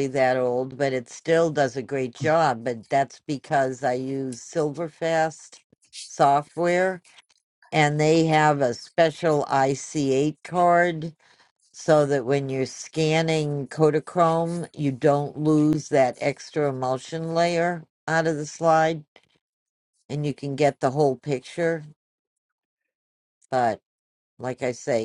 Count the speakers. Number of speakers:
one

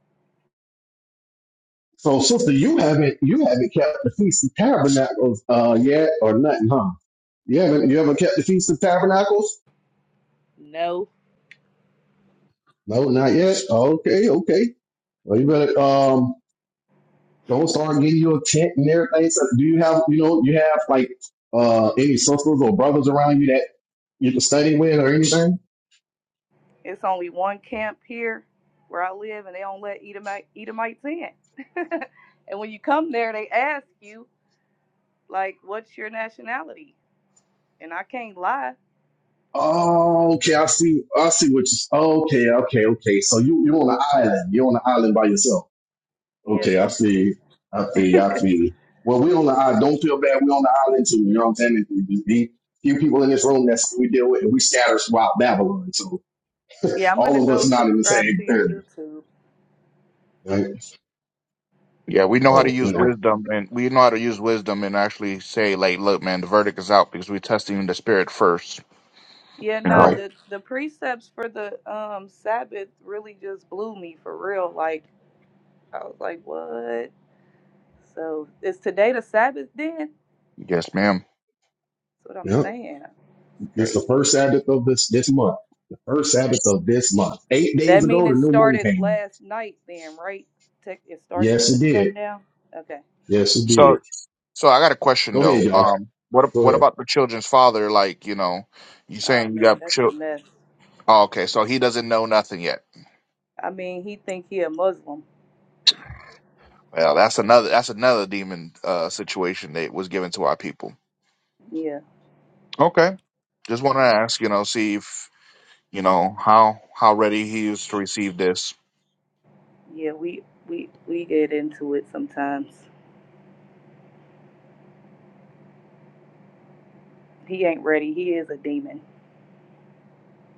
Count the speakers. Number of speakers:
three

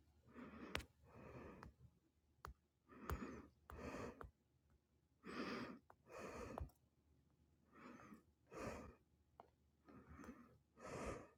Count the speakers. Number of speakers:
zero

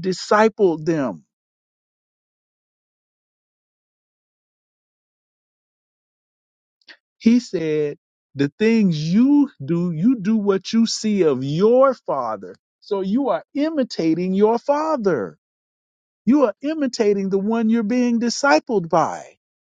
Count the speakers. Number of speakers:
one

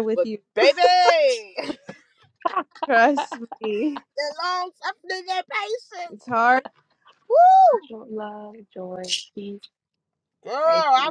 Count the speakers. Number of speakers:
three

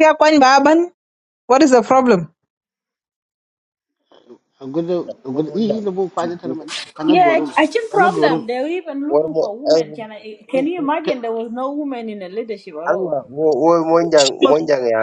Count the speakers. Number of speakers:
four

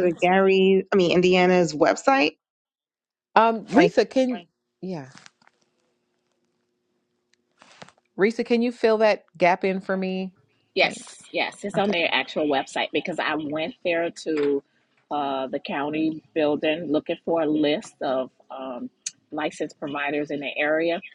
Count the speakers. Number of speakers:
three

